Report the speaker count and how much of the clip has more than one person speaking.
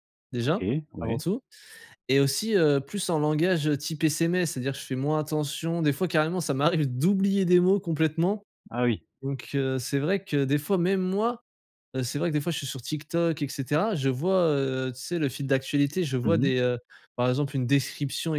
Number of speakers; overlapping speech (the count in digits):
2, about 3%